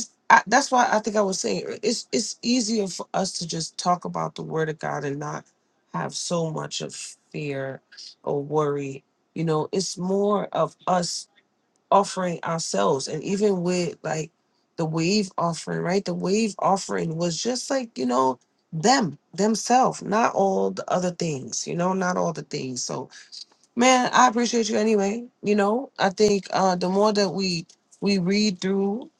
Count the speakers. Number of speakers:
one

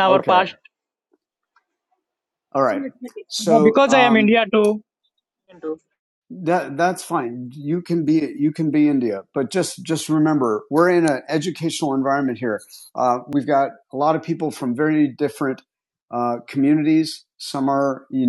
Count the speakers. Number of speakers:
two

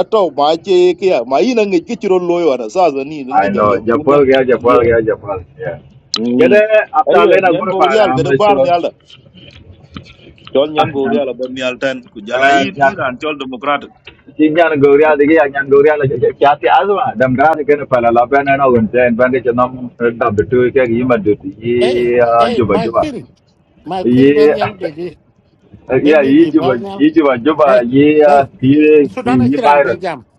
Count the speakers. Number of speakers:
three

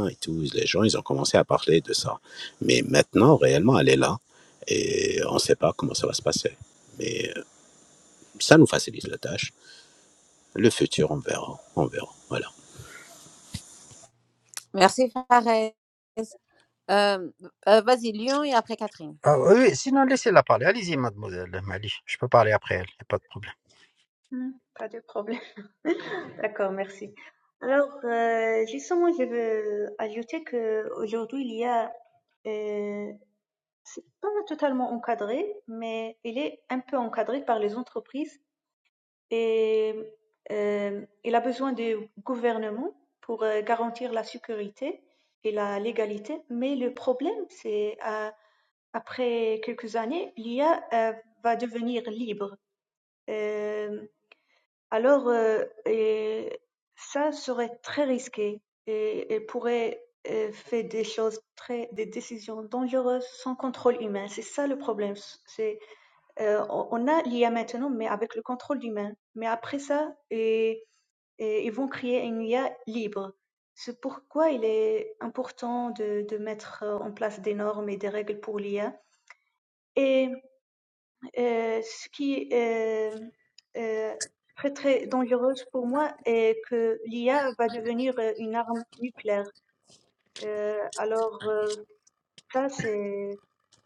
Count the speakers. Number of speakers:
four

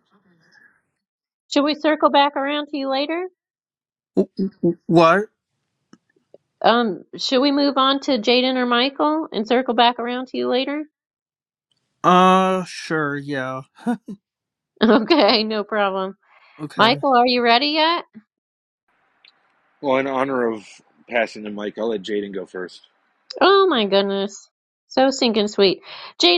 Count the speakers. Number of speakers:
three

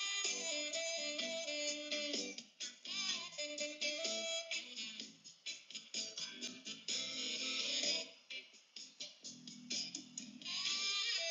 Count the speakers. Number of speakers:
zero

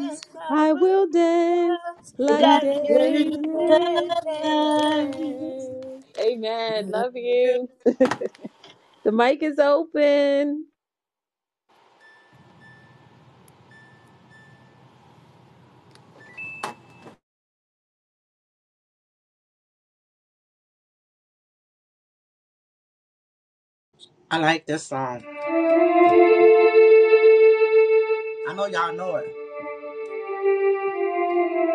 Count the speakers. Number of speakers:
three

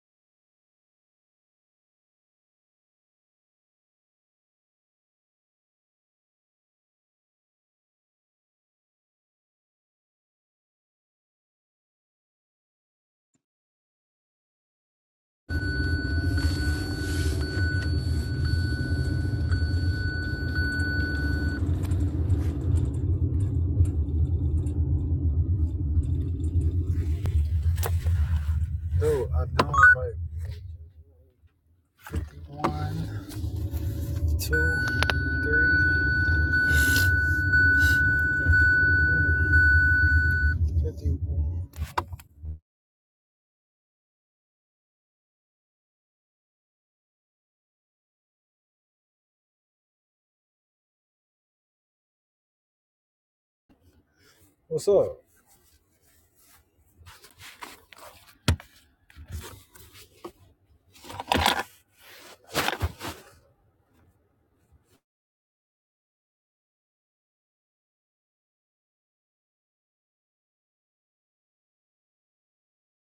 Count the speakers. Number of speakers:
one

